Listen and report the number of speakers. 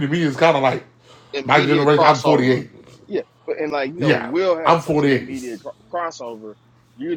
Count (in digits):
2